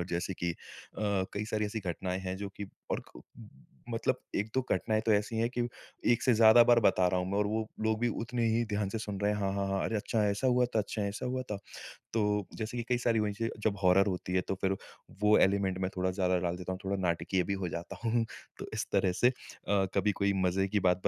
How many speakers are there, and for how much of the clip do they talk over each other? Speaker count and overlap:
1, no overlap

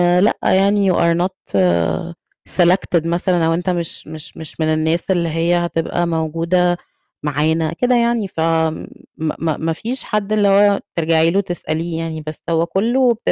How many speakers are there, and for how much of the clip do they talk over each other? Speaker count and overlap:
1, no overlap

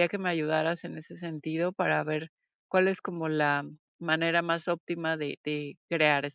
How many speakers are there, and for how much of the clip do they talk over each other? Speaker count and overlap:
1, no overlap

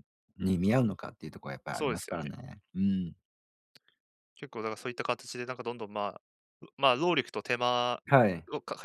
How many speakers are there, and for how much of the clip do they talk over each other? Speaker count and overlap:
2, about 6%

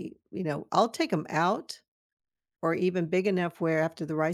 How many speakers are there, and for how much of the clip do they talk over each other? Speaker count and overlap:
1, no overlap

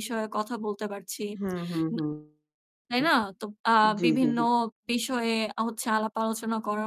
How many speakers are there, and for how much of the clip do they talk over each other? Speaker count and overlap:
2, about 8%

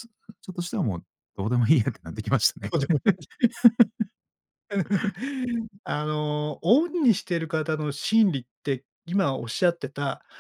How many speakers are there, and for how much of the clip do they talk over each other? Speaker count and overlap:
2, no overlap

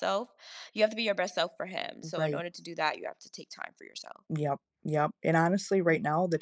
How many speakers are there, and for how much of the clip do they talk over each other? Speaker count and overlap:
2, about 4%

